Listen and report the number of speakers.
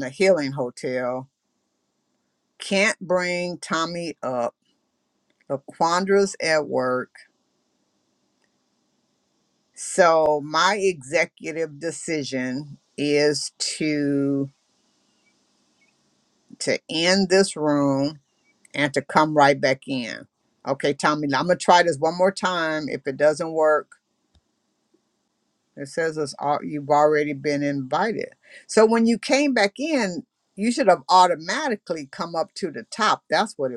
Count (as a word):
one